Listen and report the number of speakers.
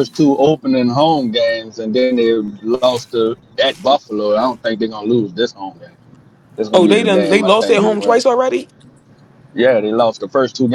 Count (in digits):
2